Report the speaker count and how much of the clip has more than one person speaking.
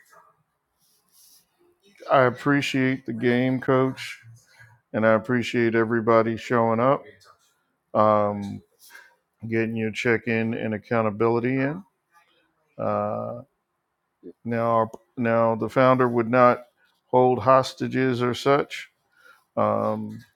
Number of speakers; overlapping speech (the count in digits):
1, no overlap